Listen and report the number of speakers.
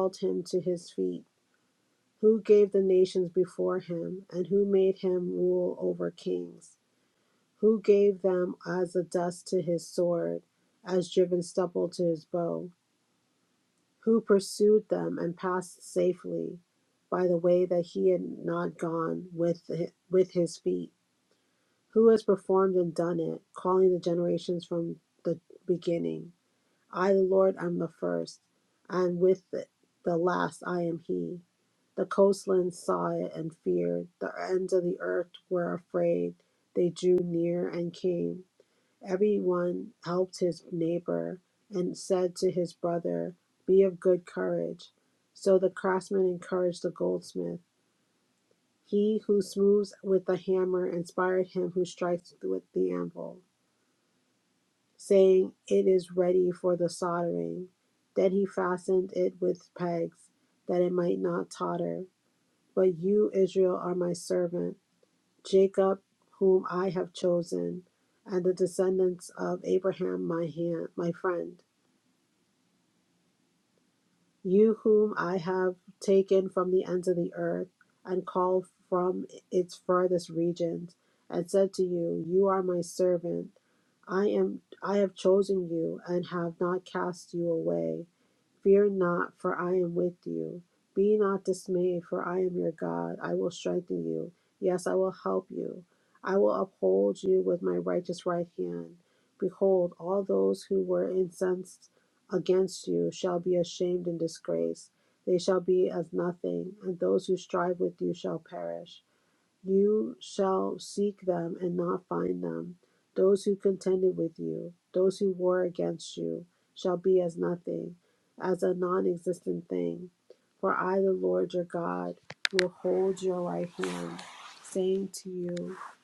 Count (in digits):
1